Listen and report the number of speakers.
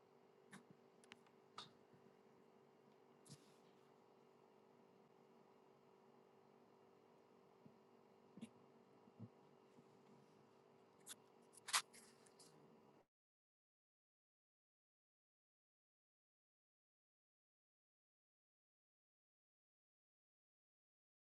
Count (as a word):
zero